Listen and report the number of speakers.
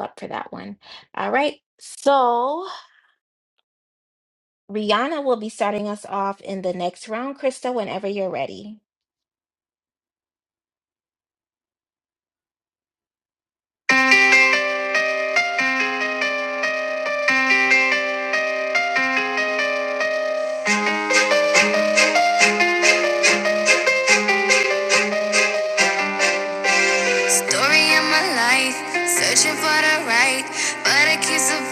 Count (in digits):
2